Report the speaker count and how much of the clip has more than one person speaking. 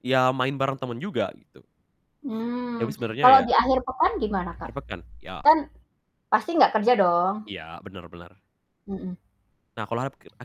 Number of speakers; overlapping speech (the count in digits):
2, about 7%